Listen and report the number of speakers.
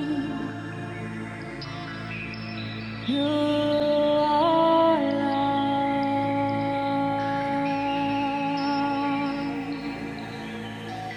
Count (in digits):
1